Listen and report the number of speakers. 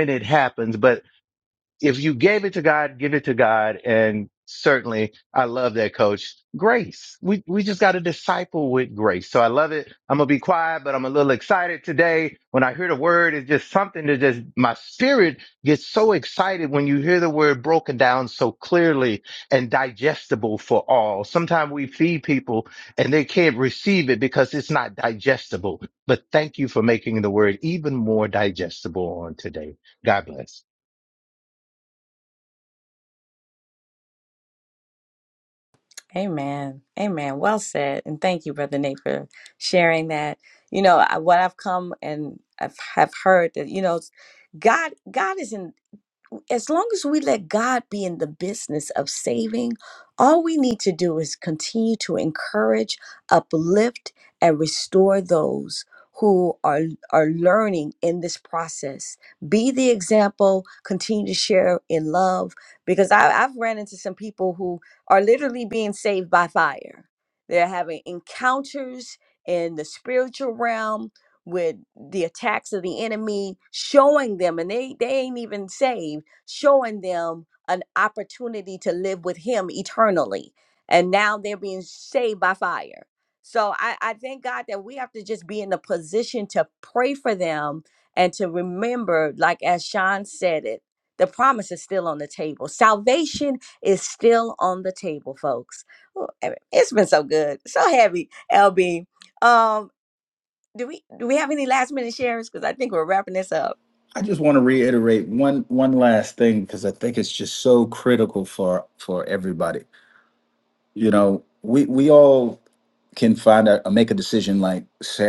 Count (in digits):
3